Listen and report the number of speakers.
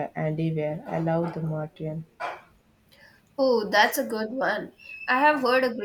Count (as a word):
two